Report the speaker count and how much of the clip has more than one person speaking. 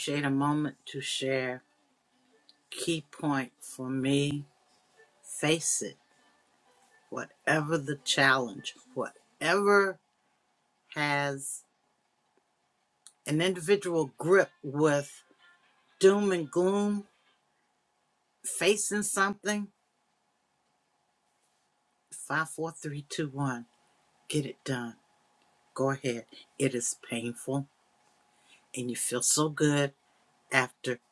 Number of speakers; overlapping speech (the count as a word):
one, no overlap